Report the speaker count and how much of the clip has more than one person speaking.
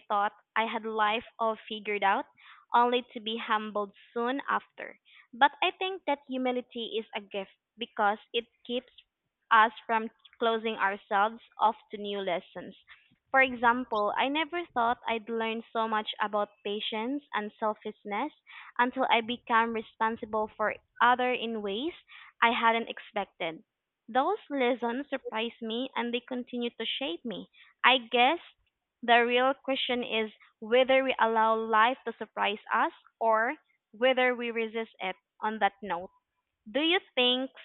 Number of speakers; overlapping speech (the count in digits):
1, no overlap